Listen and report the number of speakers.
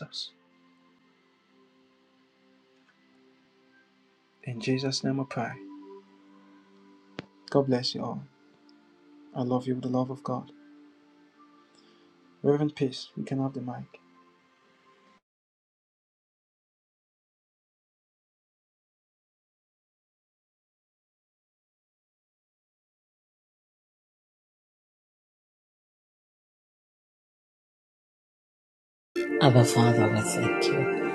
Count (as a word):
two